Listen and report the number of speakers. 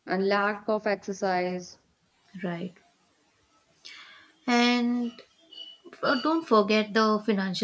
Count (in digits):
2